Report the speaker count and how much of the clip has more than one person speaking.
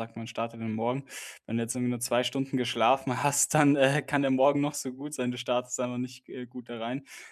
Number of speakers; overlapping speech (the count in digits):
1, no overlap